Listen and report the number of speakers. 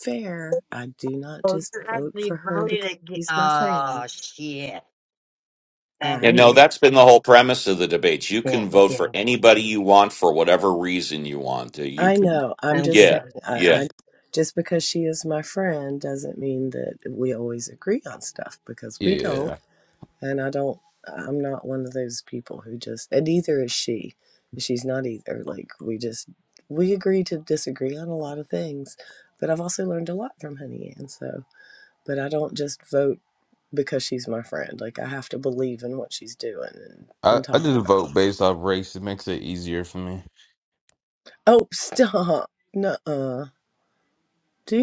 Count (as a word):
four